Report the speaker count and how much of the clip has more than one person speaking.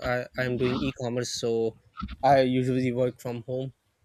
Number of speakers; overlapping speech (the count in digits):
1, no overlap